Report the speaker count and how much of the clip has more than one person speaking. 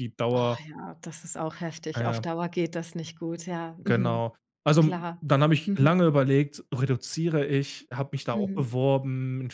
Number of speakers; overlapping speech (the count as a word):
two, about 19%